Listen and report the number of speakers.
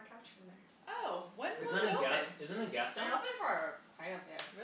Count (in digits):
3